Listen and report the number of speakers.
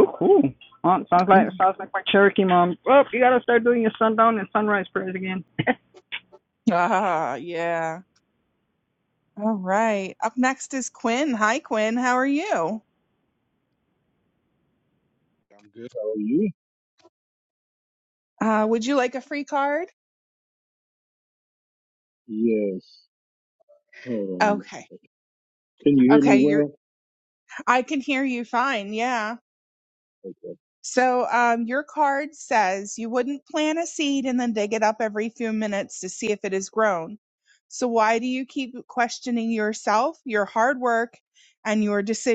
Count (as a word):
three